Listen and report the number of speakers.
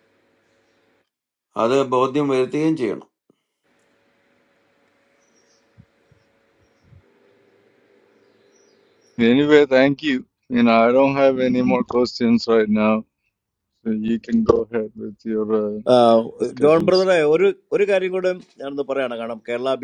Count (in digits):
3